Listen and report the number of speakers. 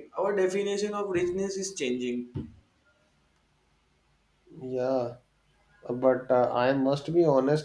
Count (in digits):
2